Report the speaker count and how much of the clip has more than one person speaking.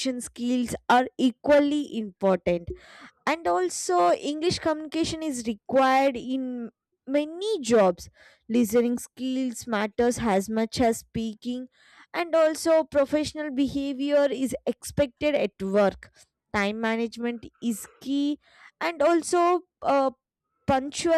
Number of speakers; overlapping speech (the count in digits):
1, no overlap